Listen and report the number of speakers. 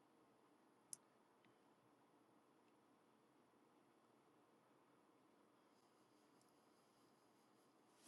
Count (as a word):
zero